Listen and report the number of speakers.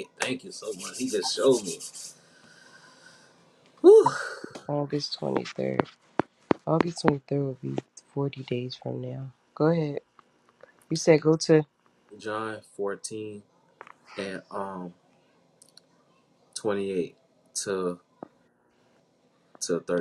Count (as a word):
two